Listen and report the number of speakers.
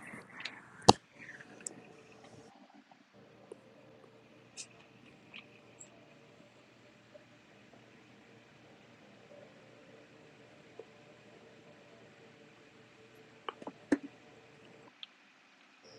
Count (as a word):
zero